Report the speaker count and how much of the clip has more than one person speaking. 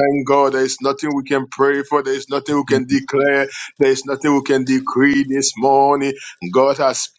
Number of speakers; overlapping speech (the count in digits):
1, no overlap